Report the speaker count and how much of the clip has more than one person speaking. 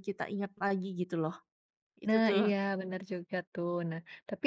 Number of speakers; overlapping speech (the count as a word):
two, about 10%